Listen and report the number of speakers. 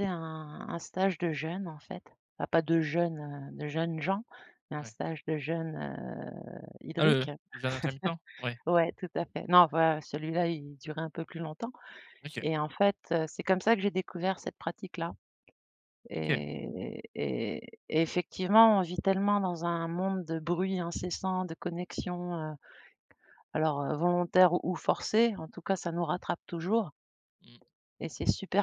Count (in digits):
2